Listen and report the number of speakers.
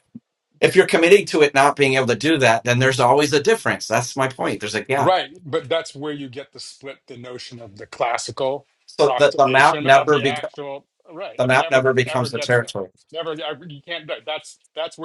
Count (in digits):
2